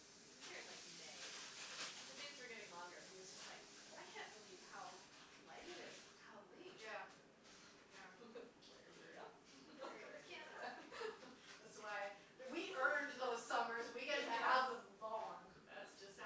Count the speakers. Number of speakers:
2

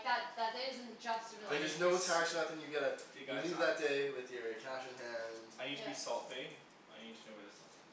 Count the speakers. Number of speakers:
3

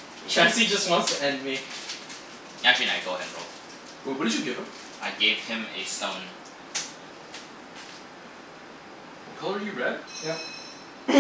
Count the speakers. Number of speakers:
3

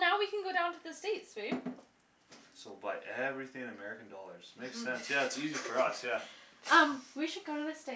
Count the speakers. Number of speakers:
3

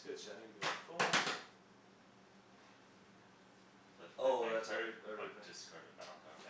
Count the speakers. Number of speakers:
2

